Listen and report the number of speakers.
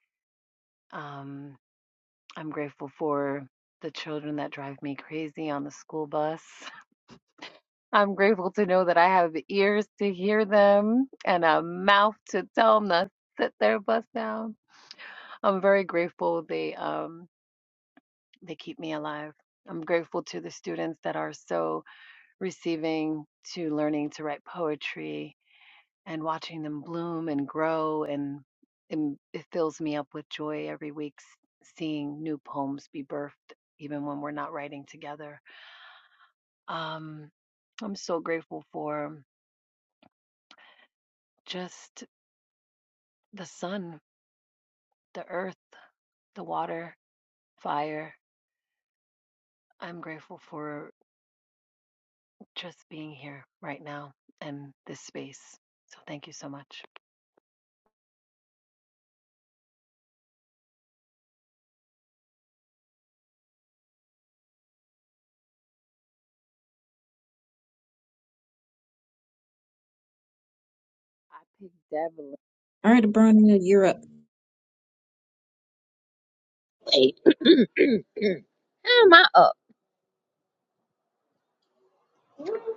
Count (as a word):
three